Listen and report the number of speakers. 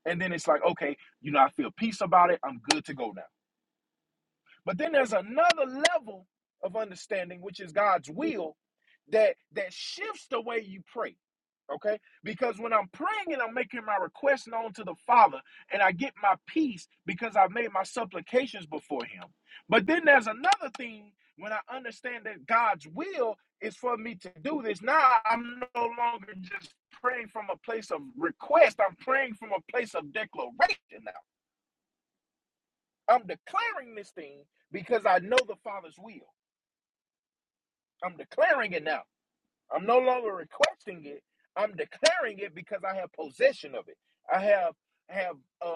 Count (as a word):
one